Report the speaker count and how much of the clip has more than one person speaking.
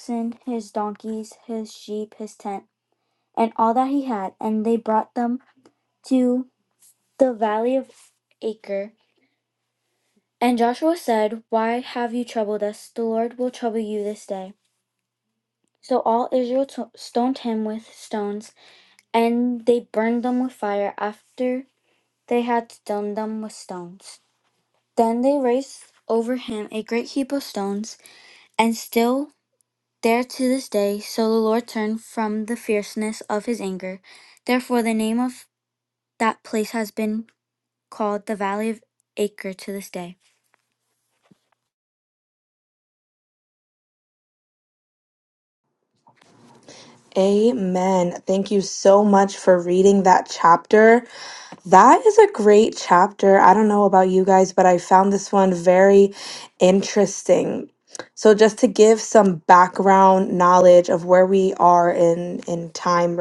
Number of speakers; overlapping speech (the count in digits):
2, no overlap